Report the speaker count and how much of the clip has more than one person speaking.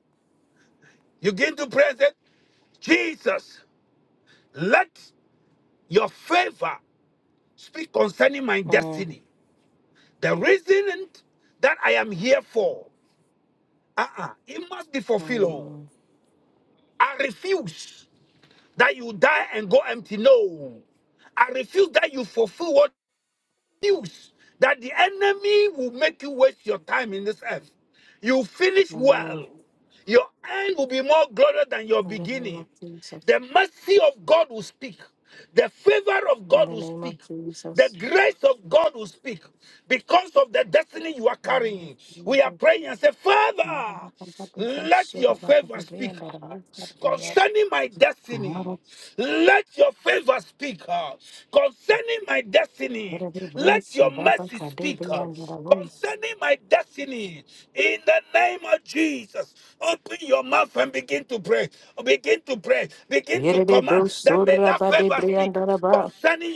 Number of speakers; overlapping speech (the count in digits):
2, about 15%